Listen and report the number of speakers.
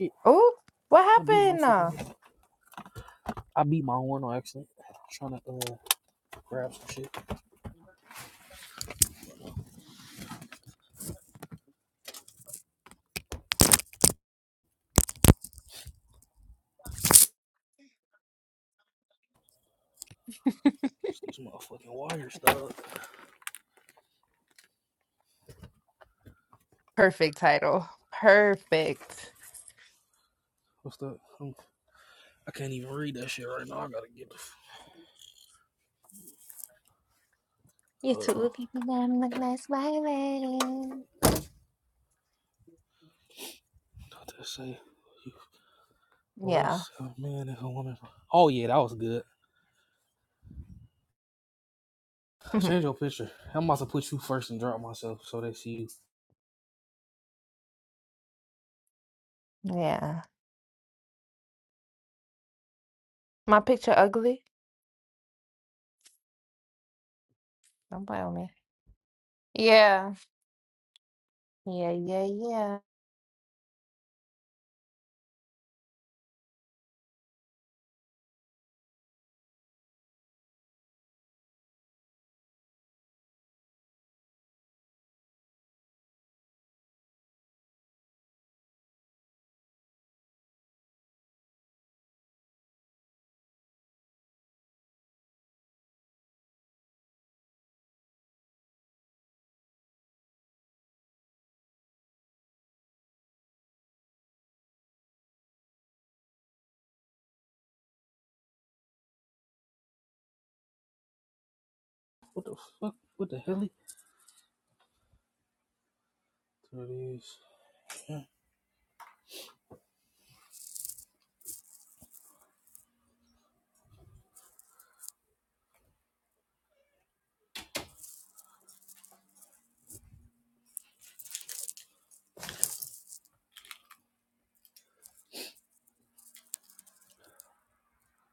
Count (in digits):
2